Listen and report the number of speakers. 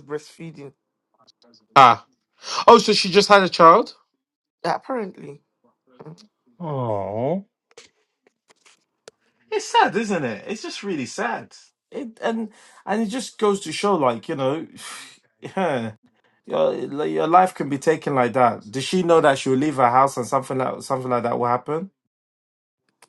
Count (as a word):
two